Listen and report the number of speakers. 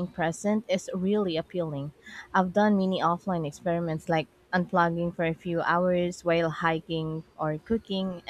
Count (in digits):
1